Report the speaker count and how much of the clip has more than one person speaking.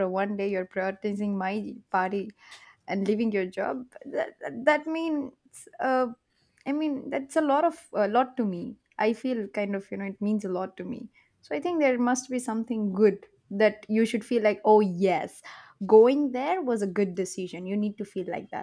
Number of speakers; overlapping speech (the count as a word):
one, no overlap